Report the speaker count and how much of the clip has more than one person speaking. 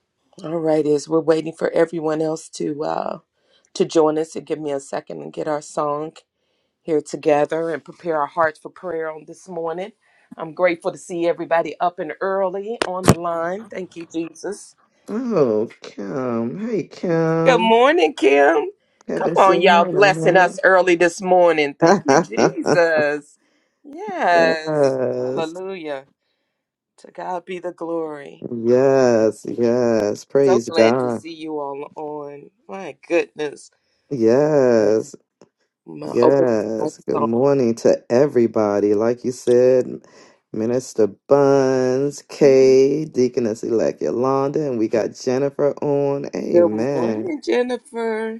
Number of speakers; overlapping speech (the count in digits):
2, about 10%